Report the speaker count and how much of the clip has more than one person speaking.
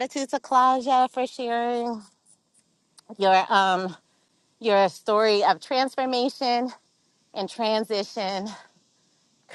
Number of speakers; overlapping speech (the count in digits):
1, no overlap